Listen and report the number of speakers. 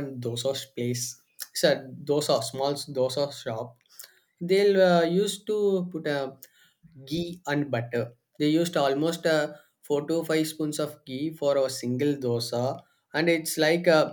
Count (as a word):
one